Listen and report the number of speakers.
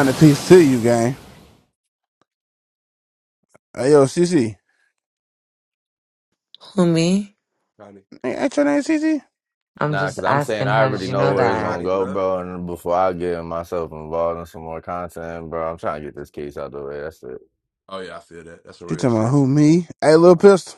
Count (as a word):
four